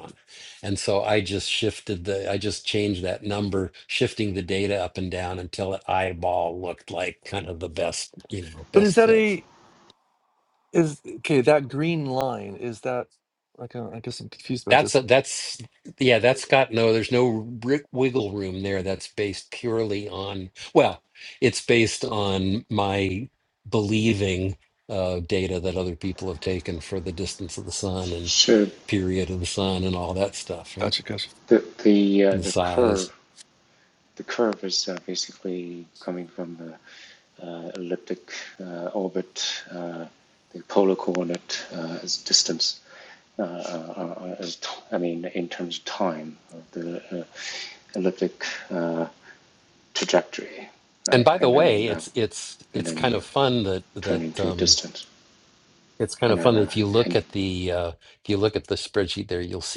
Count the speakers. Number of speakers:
3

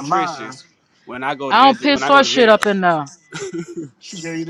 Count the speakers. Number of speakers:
3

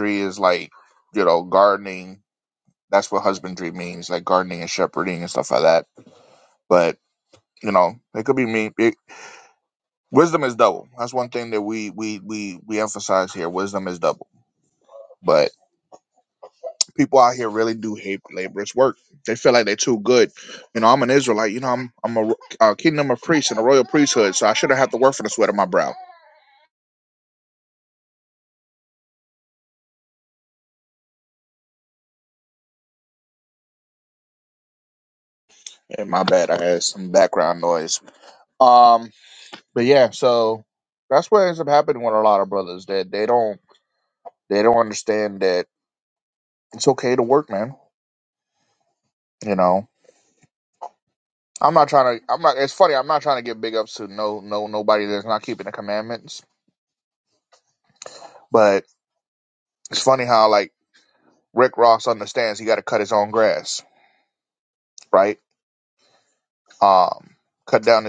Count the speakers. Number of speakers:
1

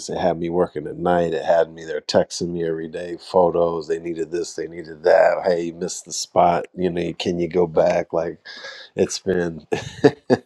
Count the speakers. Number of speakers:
1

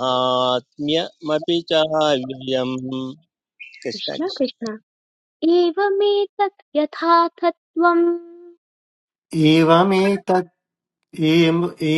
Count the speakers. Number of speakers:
3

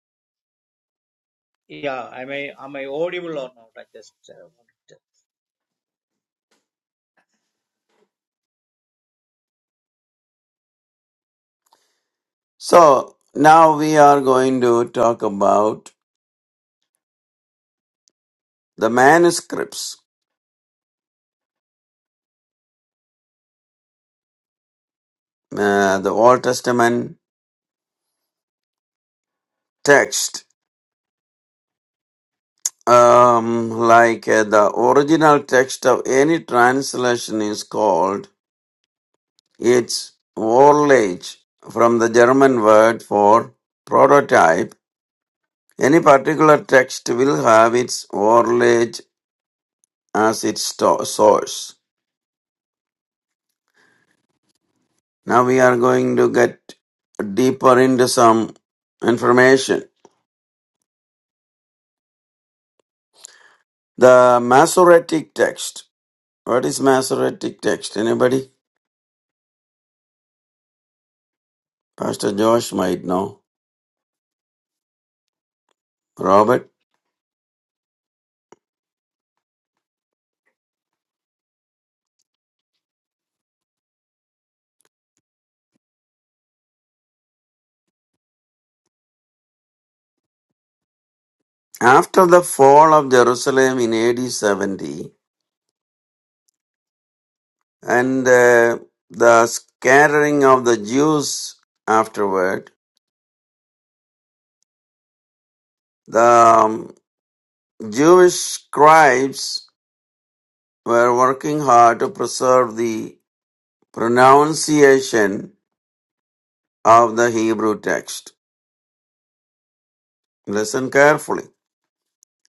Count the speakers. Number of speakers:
2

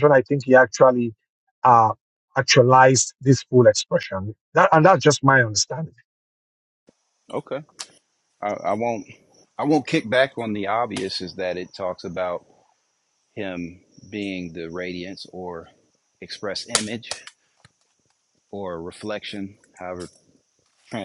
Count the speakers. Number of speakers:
2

